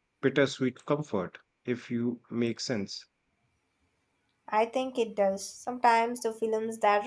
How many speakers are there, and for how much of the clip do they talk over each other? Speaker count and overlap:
two, no overlap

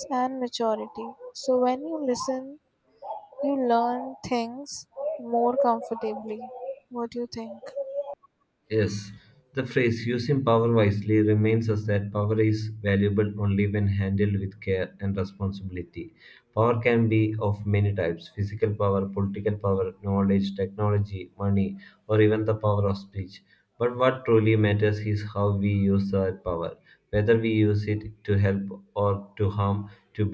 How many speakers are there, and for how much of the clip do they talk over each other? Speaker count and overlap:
two, no overlap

